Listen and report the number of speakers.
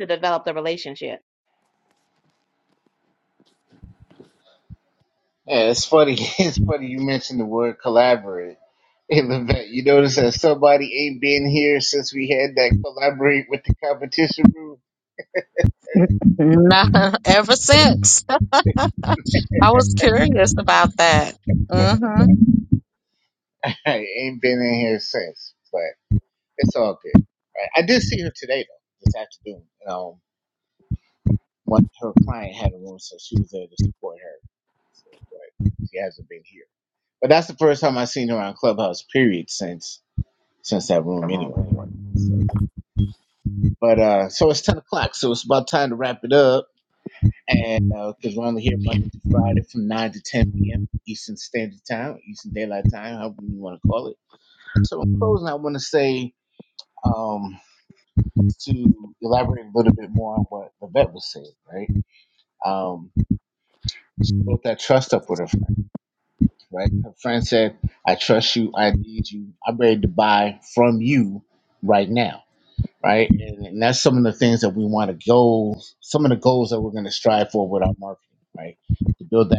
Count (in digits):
3